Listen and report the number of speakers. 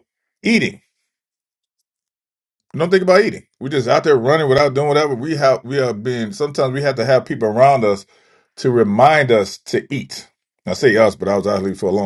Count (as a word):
one